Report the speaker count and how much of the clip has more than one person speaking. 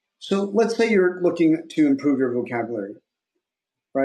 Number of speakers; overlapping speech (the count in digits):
1, no overlap